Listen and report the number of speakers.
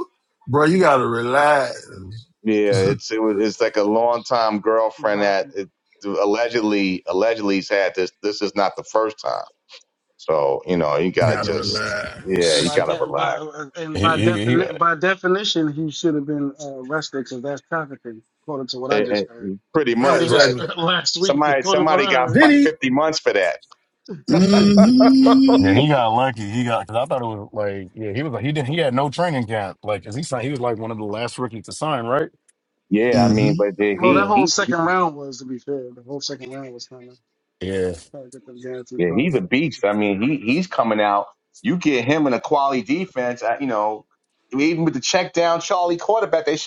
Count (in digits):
4